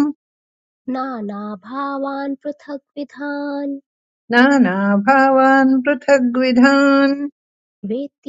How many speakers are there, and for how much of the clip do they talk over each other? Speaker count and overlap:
2, no overlap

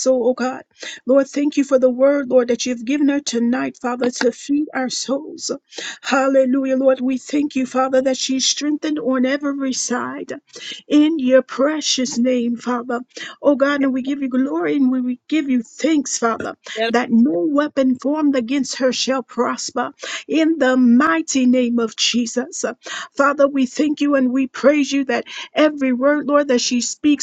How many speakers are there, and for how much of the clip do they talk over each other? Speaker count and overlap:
1, no overlap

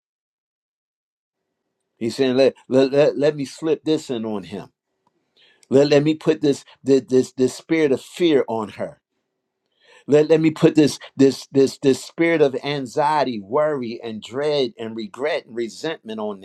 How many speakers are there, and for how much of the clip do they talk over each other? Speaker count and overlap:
1, no overlap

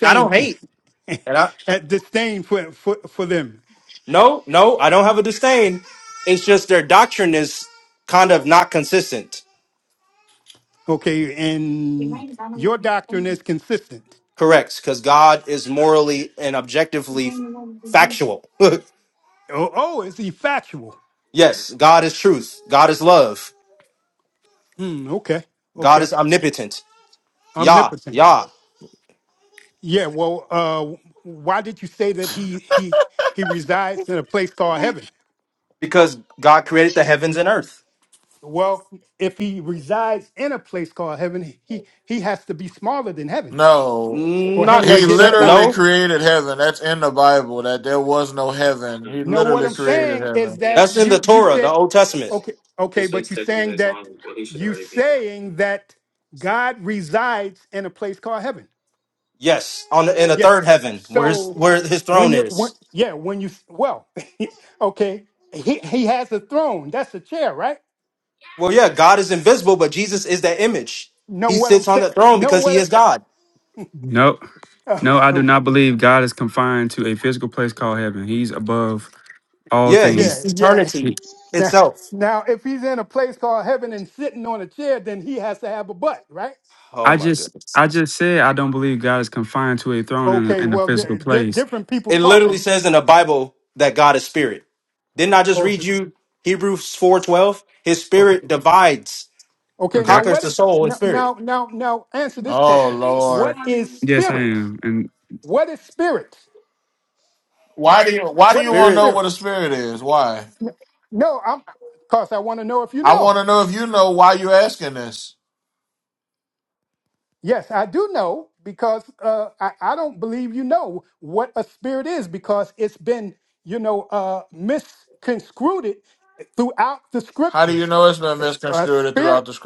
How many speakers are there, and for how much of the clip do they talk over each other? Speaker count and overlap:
4, about 13%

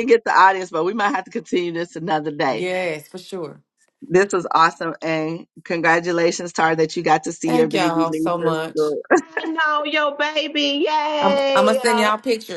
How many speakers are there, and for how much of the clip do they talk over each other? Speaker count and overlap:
3, about 20%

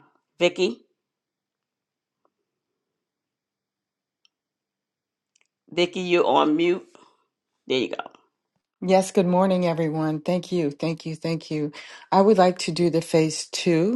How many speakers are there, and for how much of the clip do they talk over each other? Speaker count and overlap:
2, no overlap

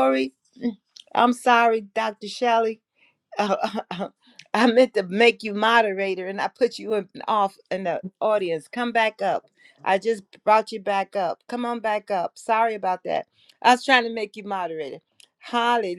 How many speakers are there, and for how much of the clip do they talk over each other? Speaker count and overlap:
1, no overlap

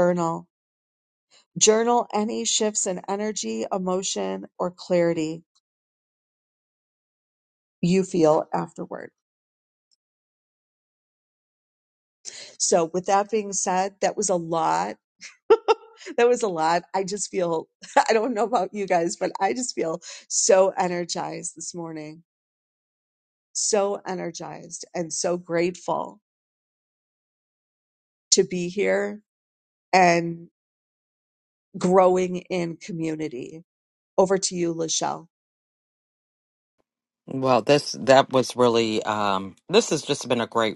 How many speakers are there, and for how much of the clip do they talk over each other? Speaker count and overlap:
2, no overlap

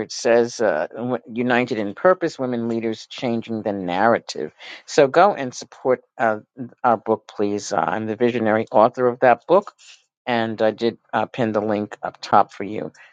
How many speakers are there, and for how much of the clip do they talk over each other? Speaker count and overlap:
1, no overlap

